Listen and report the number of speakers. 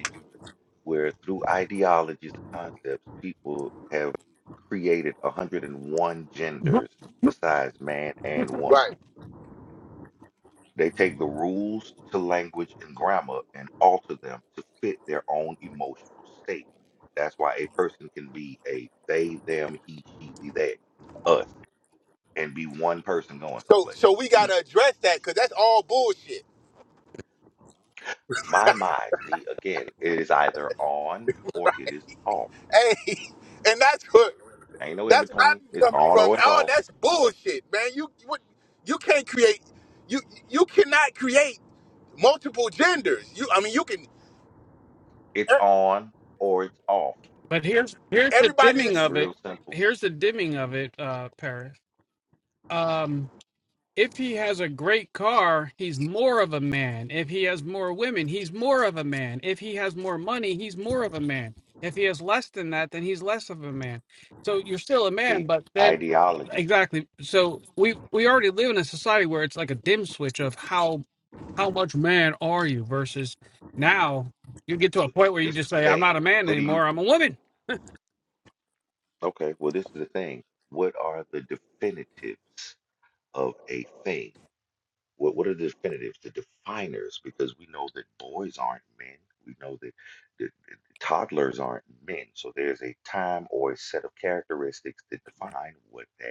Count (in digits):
3